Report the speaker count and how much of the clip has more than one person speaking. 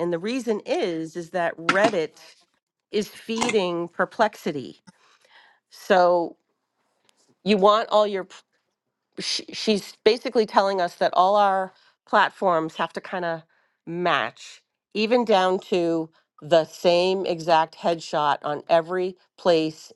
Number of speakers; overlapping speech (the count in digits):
1, no overlap